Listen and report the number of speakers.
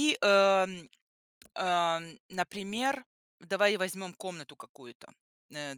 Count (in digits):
1